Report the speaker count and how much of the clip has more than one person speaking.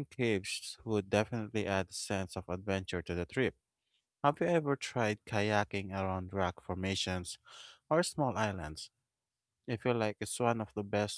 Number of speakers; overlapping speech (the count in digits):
1, no overlap